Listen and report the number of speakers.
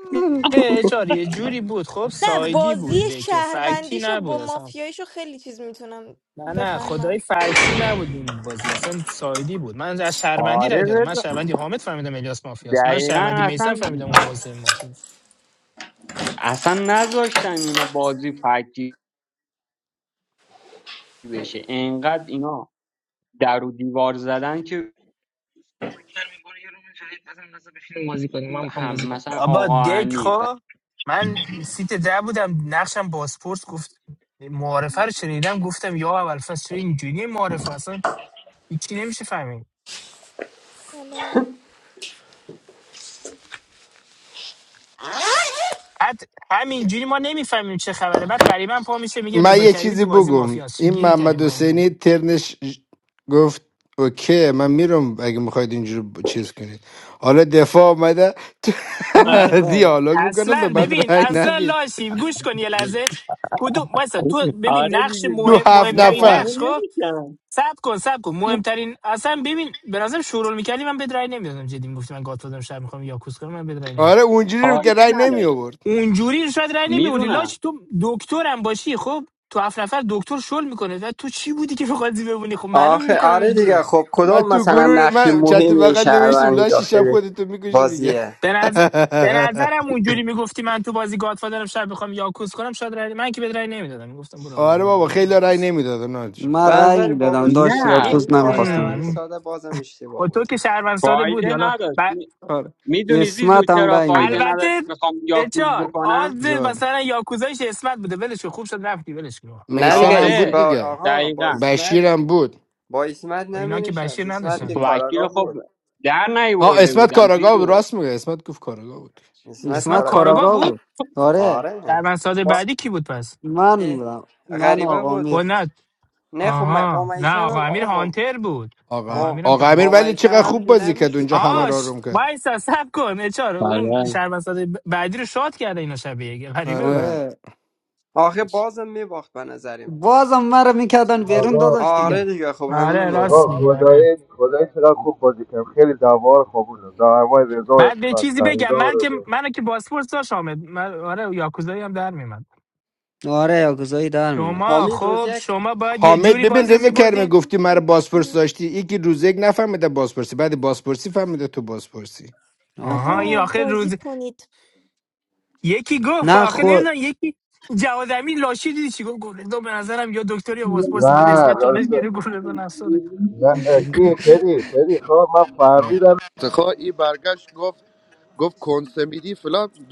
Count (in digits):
8